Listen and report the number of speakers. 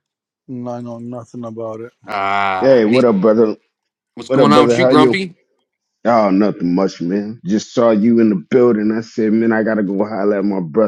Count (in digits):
3